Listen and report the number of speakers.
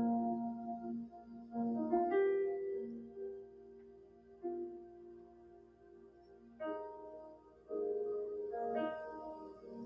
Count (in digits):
0